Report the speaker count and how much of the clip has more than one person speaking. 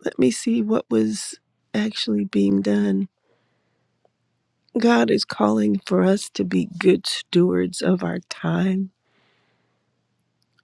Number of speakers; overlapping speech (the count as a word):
one, no overlap